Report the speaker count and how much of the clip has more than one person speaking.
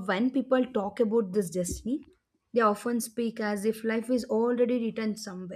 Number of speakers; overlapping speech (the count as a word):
one, no overlap